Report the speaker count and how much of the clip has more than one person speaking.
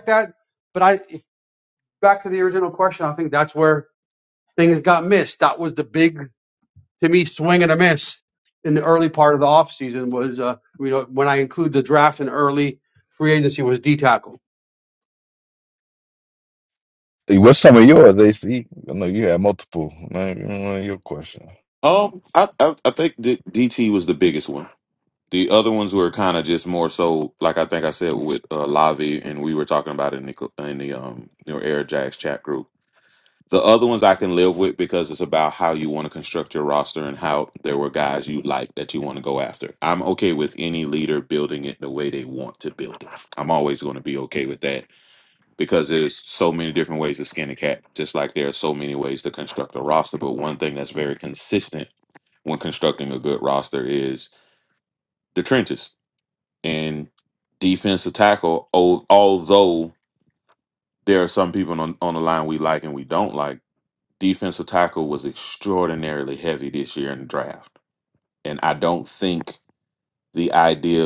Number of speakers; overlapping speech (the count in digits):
3, no overlap